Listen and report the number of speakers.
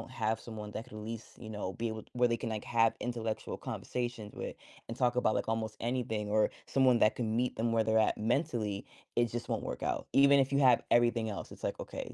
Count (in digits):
1